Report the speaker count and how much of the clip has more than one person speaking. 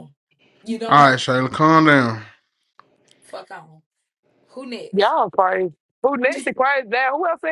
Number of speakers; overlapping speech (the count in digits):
3, about 4%